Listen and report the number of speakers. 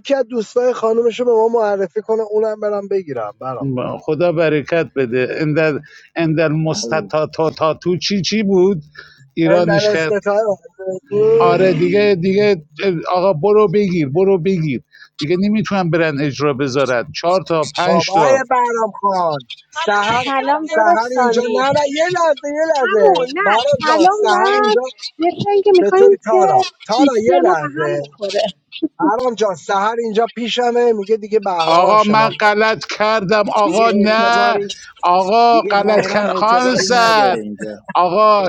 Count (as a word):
four